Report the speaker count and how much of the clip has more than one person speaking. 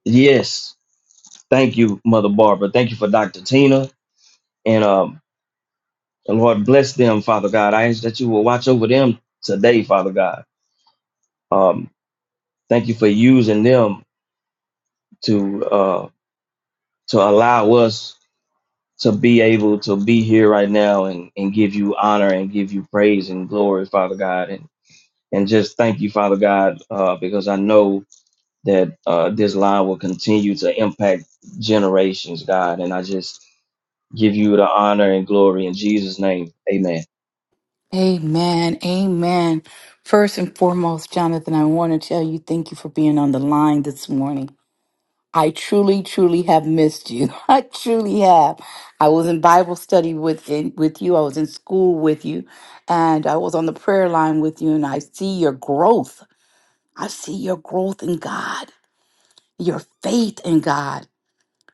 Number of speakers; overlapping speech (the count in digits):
2, no overlap